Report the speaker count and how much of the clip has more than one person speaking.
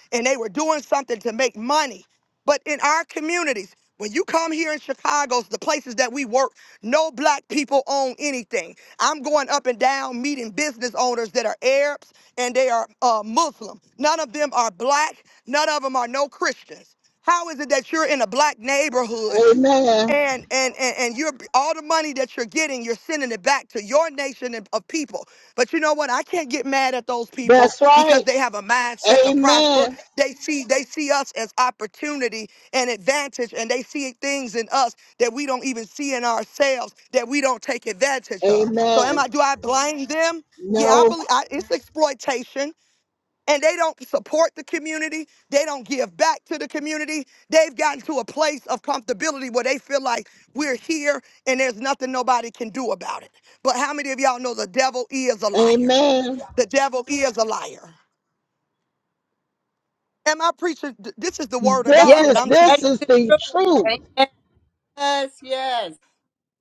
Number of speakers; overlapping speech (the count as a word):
three, about 8%